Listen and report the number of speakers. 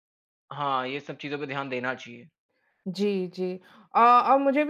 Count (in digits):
2